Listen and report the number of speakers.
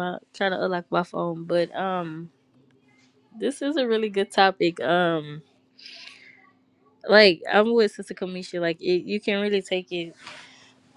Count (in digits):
1